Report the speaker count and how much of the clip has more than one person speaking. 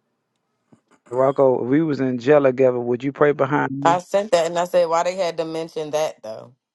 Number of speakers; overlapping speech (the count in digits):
2, about 2%